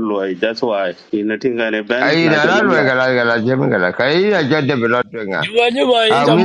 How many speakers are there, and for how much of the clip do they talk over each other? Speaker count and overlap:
three, about 14%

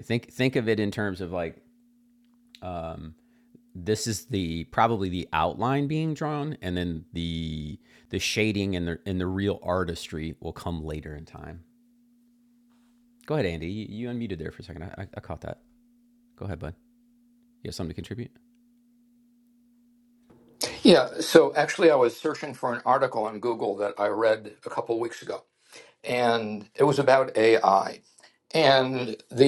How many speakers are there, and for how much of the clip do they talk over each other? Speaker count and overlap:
two, no overlap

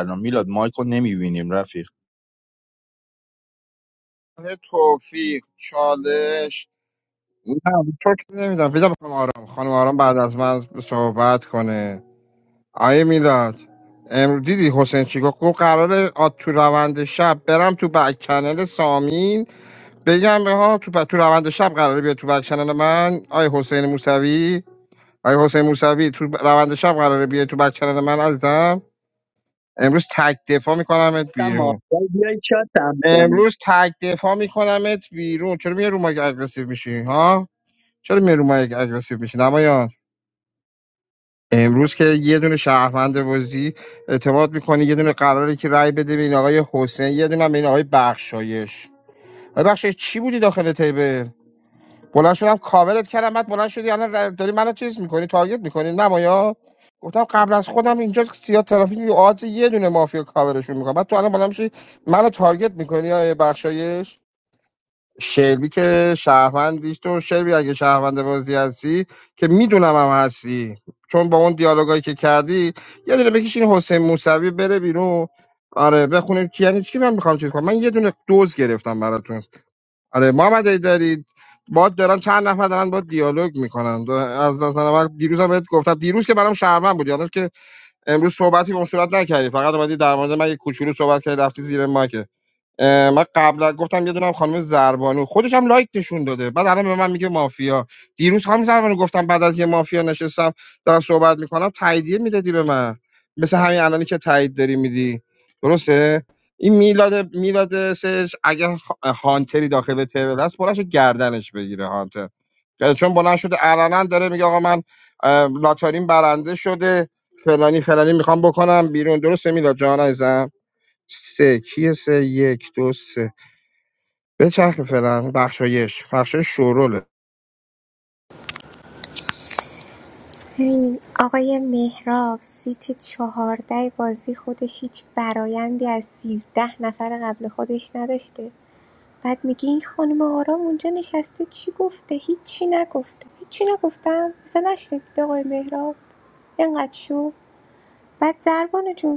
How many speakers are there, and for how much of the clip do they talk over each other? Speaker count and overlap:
four, about 1%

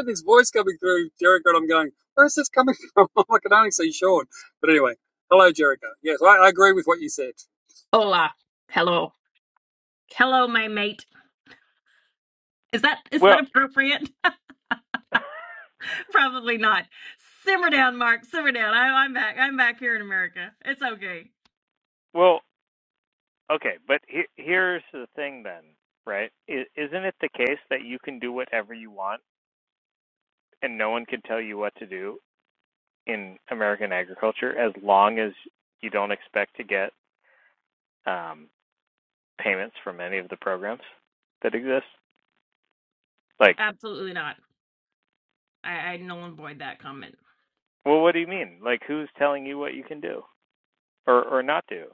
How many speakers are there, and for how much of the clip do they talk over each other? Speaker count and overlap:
three, under 1%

